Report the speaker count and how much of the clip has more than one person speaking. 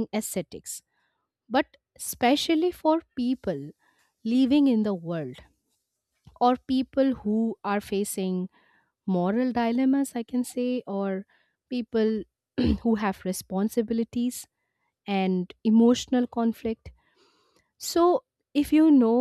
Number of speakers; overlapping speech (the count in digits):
1, no overlap